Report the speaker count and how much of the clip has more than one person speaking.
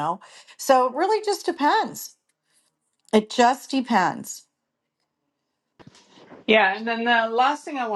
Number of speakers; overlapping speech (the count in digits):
2, no overlap